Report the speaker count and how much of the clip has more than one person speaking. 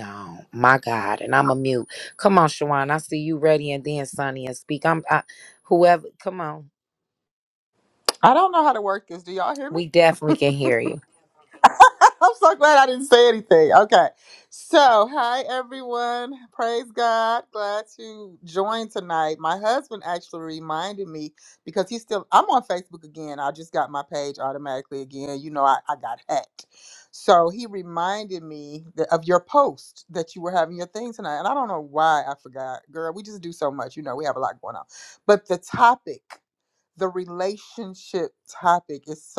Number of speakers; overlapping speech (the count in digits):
2, under 1%